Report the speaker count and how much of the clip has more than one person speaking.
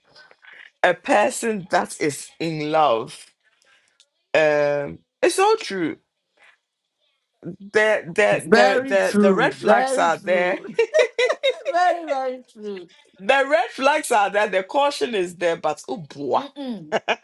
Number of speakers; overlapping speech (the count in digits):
2, about 13%